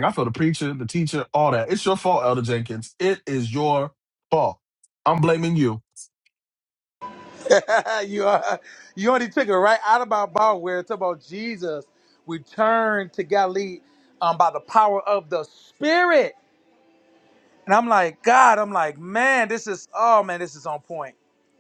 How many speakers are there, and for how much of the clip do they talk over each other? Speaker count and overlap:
2, no overlap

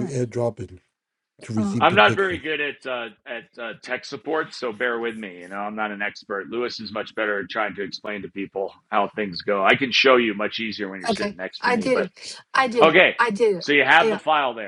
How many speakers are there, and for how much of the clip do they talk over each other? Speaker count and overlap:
3, about 18%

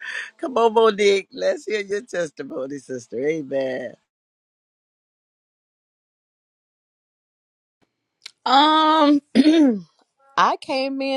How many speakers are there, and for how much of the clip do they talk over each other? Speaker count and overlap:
2, no overlap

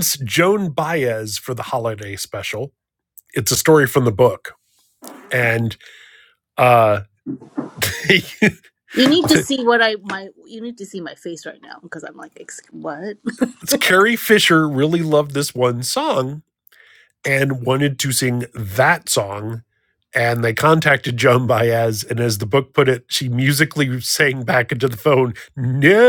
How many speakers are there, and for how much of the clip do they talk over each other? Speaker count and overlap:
2, no overlap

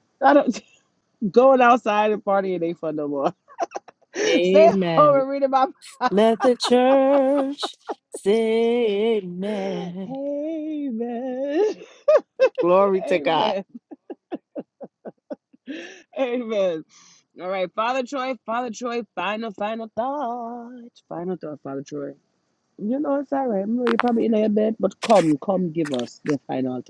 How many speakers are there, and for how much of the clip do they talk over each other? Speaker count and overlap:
2, about 5%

